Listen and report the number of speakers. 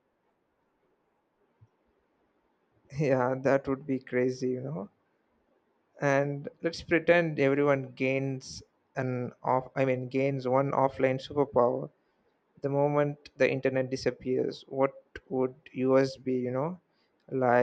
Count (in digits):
1